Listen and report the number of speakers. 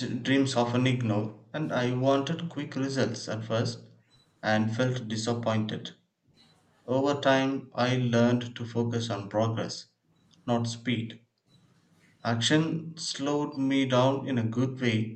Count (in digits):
1